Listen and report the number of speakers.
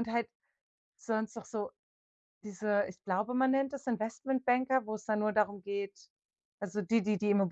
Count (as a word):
one